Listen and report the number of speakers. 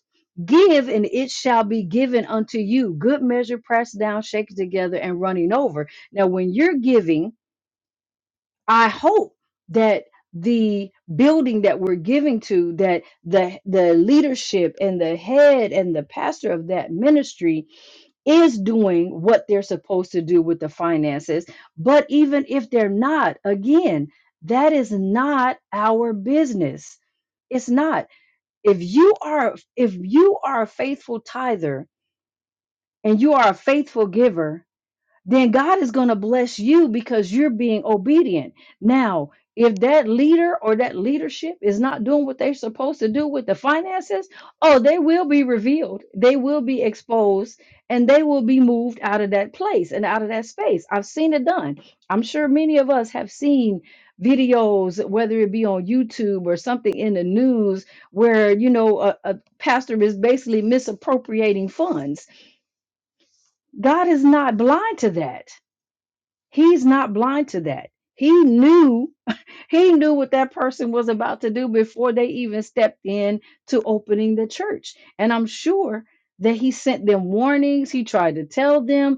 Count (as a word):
one